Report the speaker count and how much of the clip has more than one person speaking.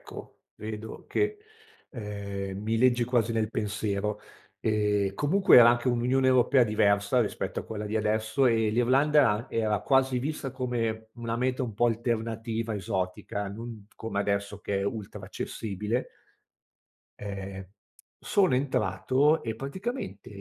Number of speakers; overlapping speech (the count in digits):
1, no overlap